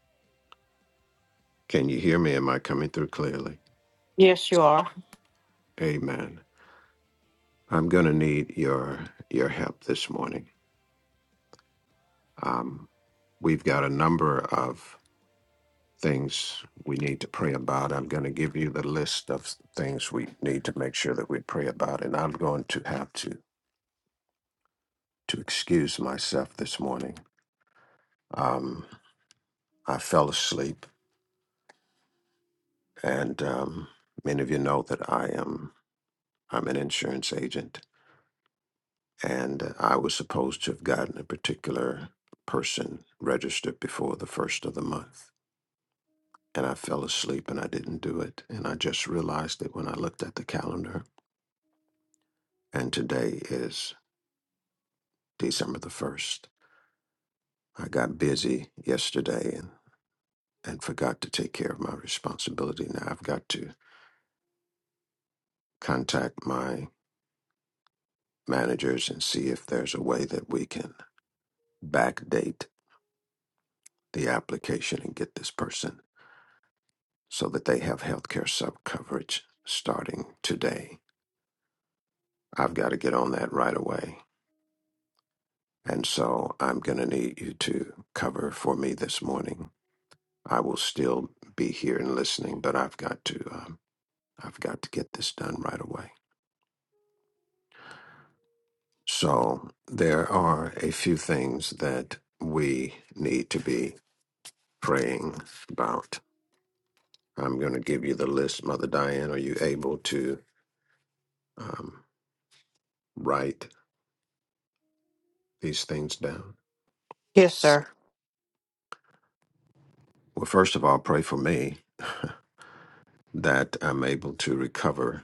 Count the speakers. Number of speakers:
2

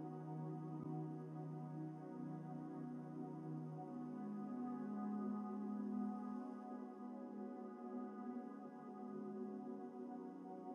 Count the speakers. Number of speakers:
0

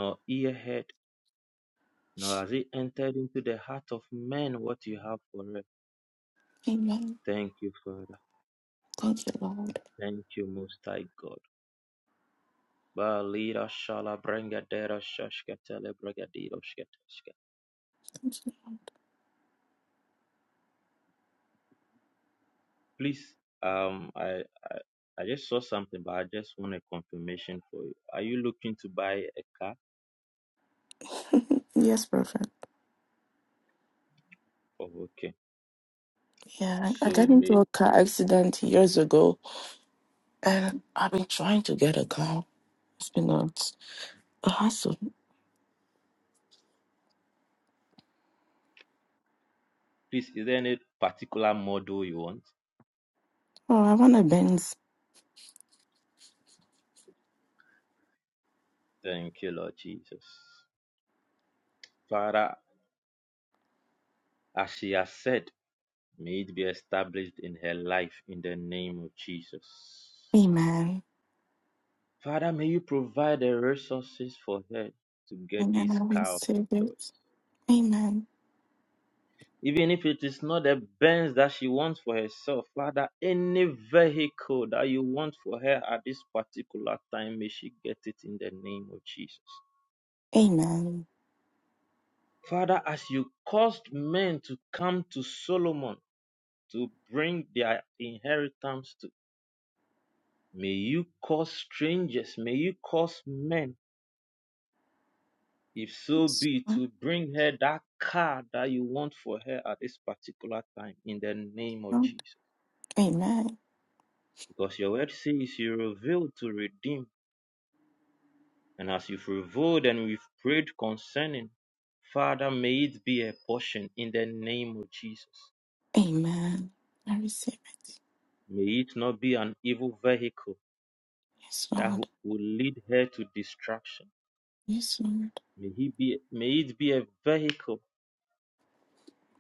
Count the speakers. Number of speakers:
2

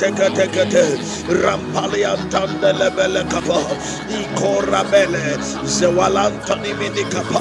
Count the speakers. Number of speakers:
2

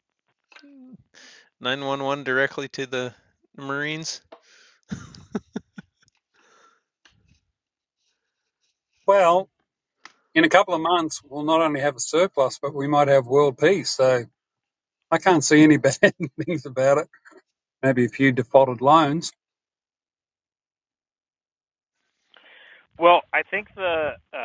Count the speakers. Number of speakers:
3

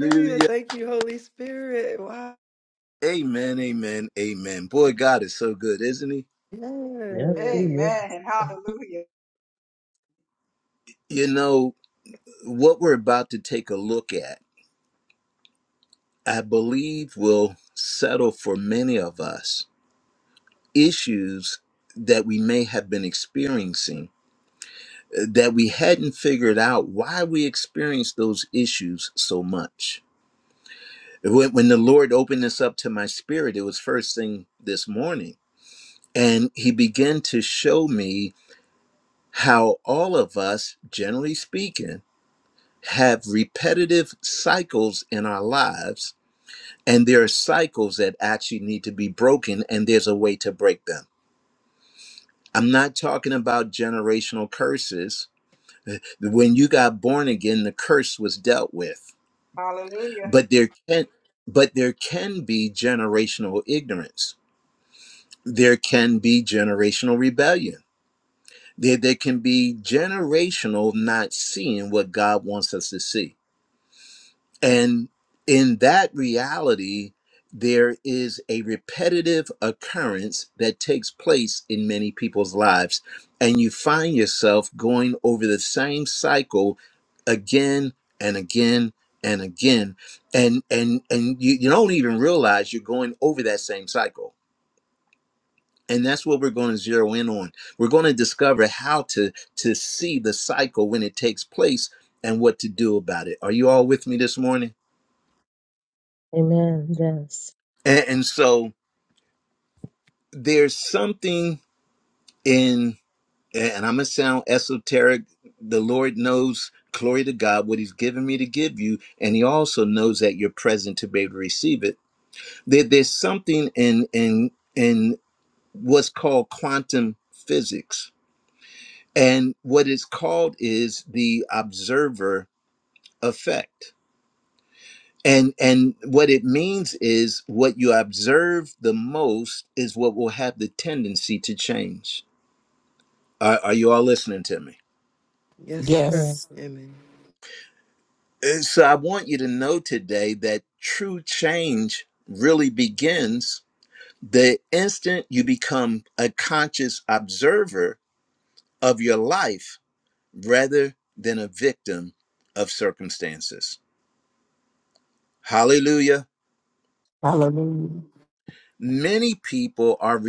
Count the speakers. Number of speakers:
5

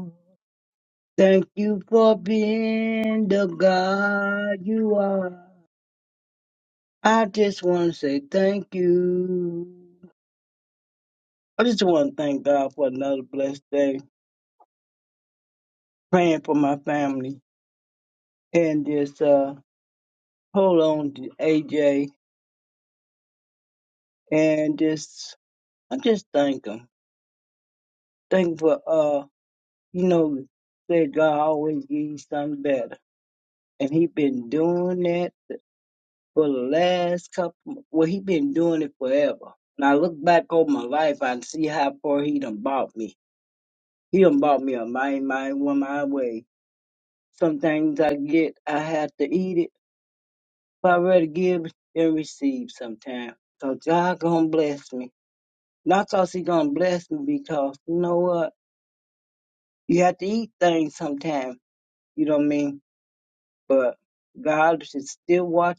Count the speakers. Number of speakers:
1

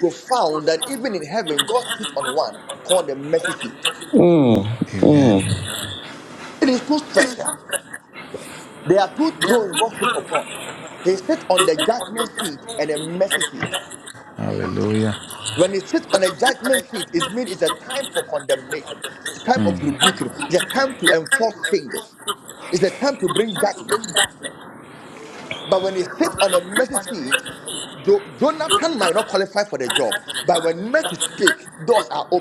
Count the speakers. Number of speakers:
3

